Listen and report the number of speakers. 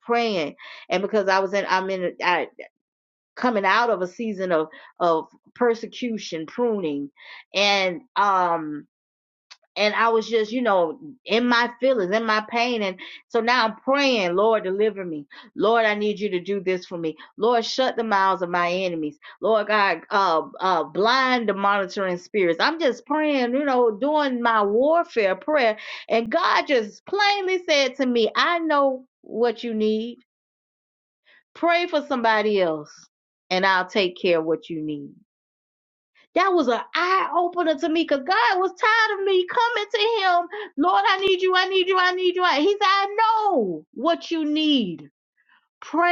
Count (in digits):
1